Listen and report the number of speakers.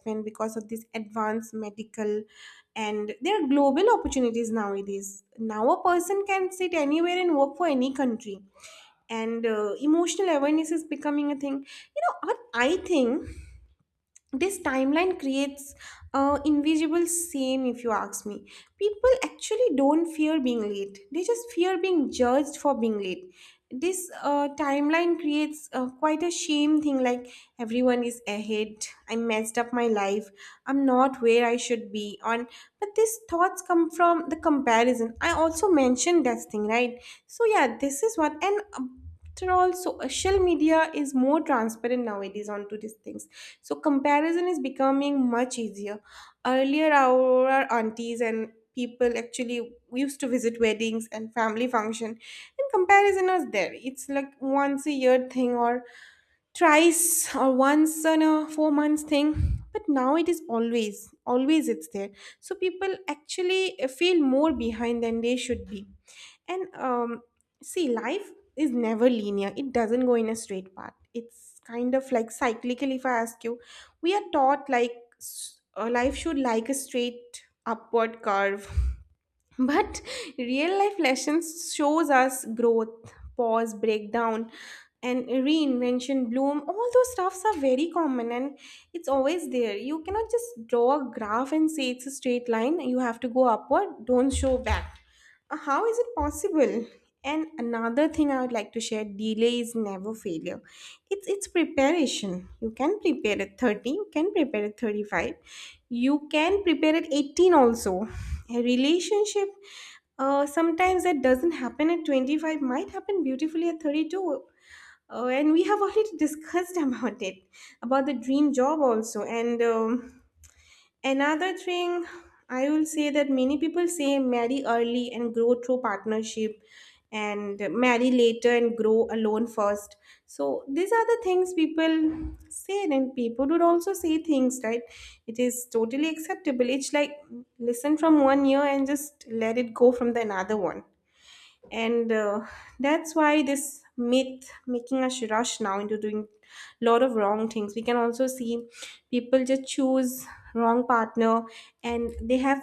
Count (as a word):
one